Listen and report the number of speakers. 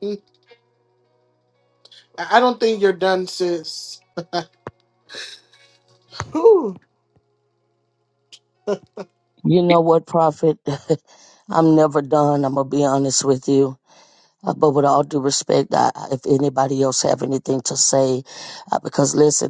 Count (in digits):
2